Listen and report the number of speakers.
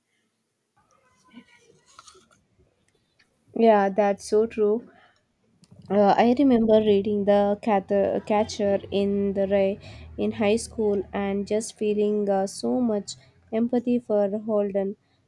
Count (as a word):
one